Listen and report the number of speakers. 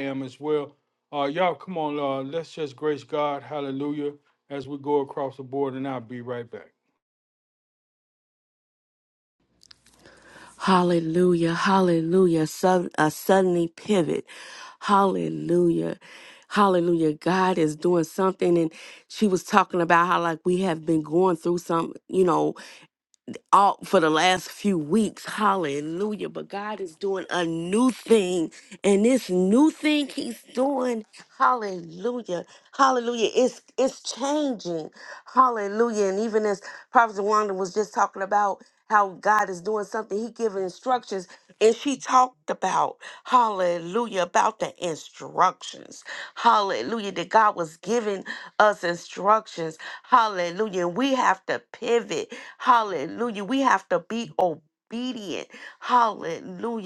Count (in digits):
2